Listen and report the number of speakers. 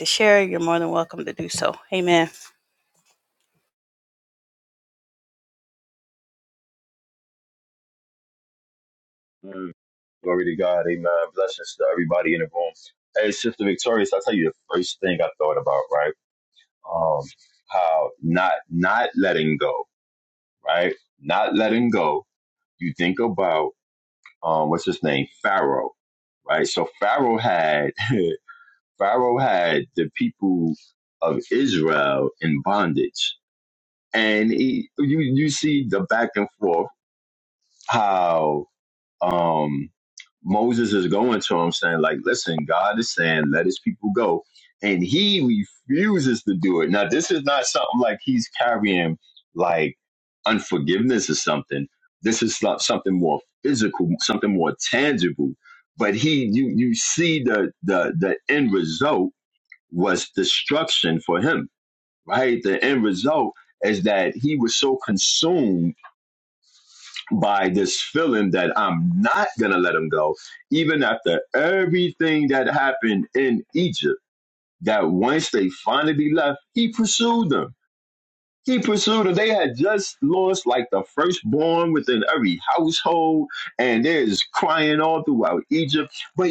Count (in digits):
2